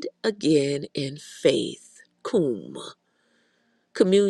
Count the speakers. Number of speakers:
one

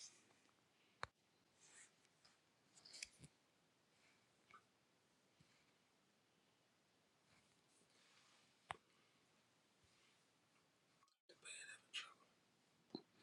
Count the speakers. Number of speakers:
zero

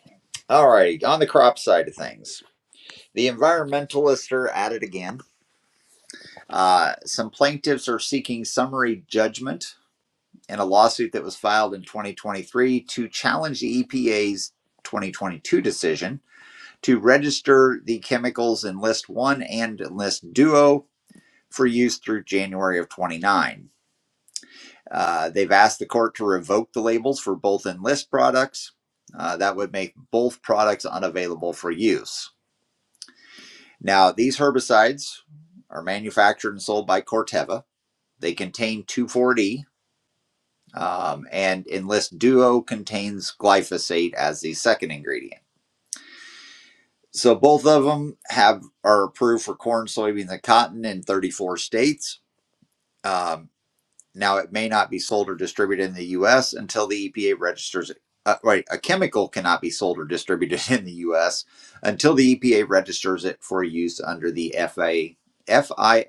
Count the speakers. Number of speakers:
one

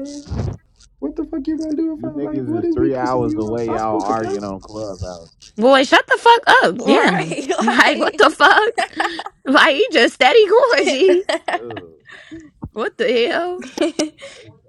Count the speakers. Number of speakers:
four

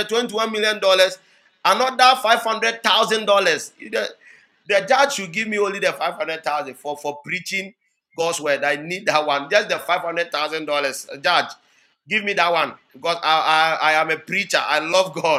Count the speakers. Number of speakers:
one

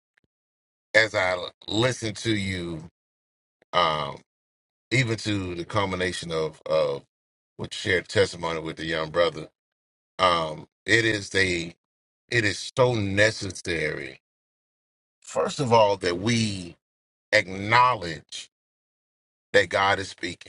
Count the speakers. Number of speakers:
one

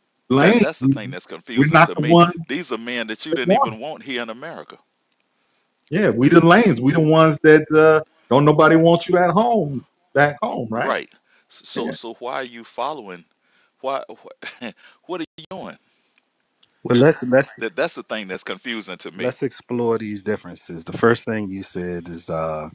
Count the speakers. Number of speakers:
three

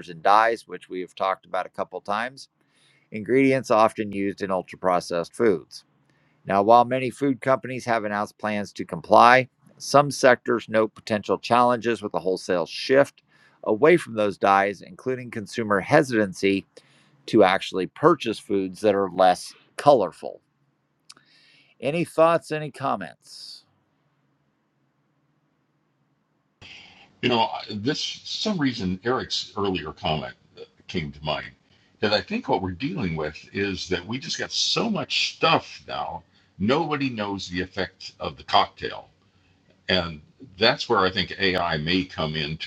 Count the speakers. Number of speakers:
two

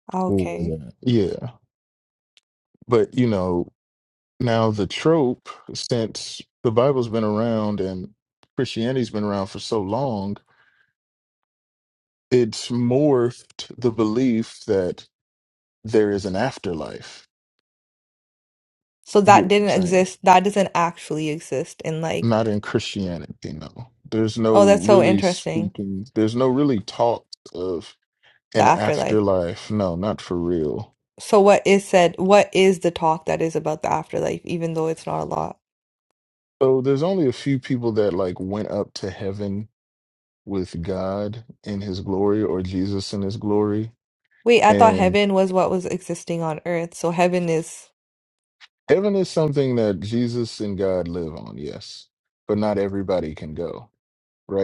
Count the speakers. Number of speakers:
two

